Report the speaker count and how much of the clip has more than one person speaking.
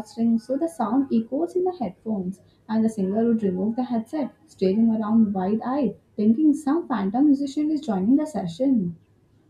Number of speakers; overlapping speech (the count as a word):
one, no overlap